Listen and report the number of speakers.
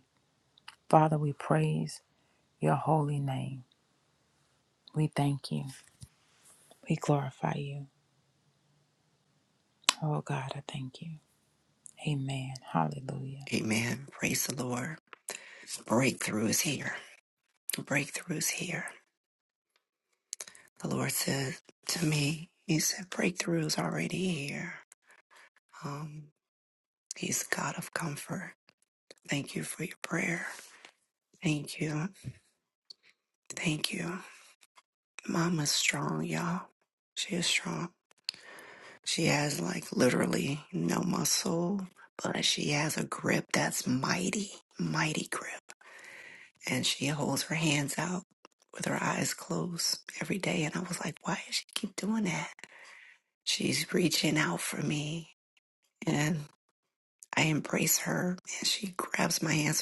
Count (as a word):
two